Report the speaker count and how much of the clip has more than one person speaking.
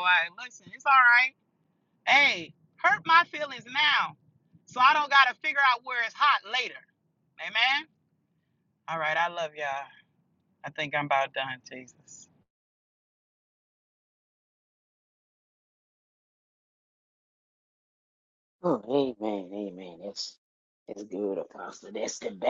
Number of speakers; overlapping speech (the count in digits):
2, no overlap